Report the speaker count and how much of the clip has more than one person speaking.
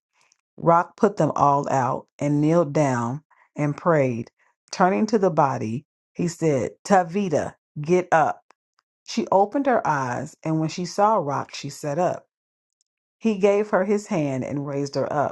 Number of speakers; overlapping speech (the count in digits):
1, no overlap